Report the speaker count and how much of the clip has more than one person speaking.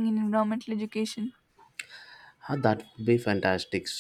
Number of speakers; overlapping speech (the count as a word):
two, no overlap